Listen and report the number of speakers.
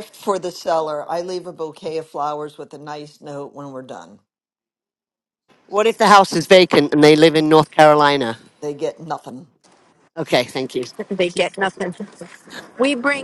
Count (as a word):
three